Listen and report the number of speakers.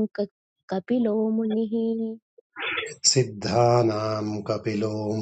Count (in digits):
2